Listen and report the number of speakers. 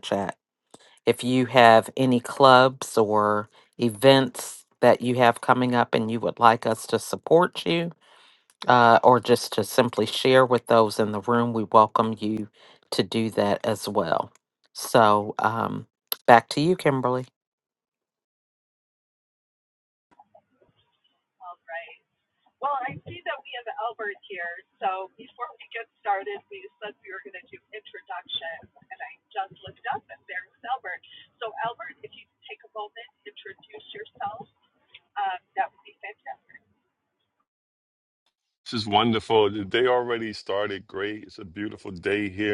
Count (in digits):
3